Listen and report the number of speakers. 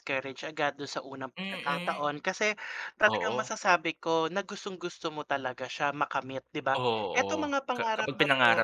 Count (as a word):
two